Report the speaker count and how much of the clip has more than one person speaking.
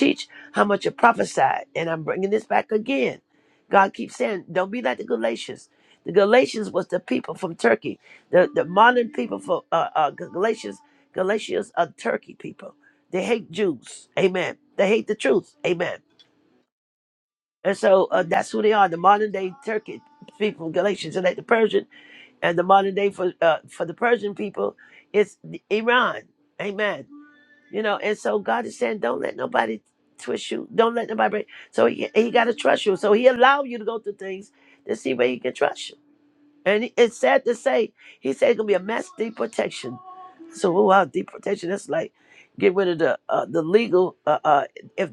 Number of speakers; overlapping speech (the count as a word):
one, no overlap